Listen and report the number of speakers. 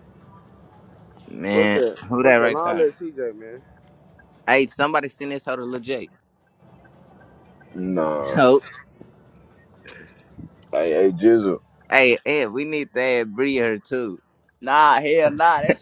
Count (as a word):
four